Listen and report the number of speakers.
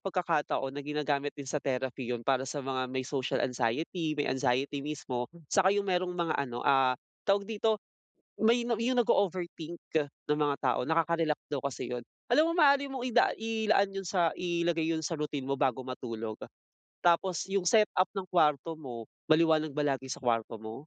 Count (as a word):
one